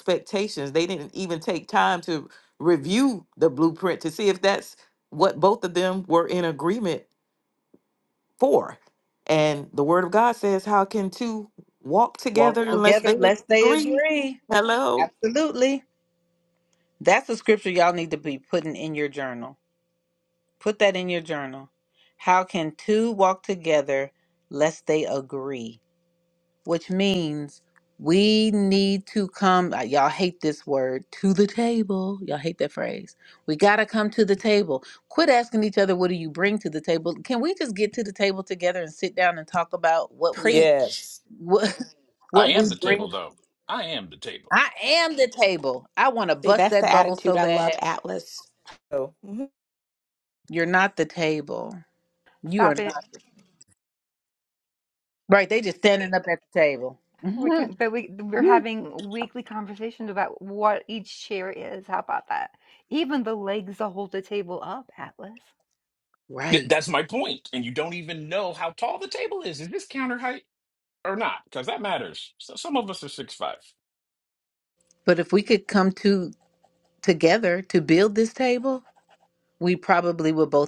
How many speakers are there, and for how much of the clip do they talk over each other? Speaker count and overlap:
5, about 7%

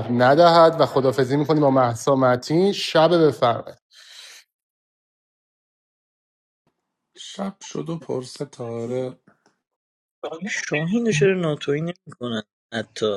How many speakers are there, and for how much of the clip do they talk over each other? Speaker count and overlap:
3, no overlap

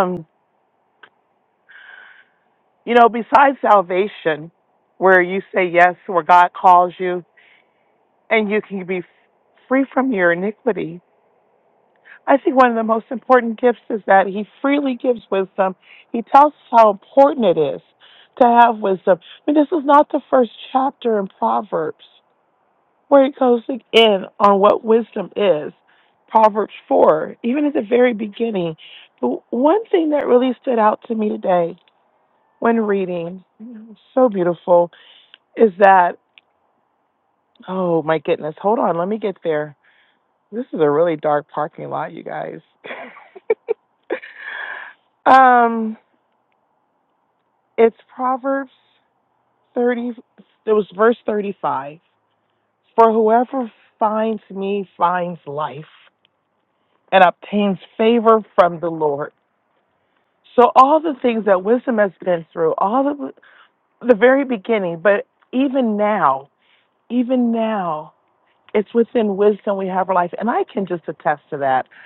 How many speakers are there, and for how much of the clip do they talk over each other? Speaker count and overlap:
1, no overlap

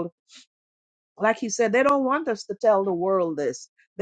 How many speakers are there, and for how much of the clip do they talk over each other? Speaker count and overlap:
1, no overlap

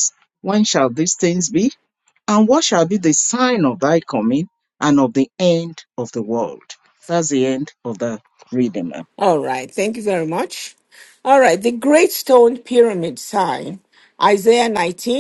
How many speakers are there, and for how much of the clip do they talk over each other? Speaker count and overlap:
2, no overlap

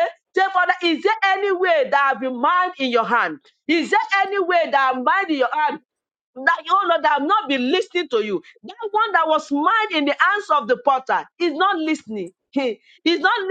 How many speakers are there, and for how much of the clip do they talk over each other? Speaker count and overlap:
1, no overlap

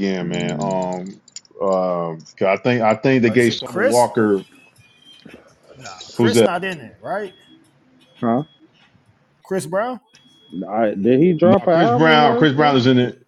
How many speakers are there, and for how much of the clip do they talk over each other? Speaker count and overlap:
3, about 22%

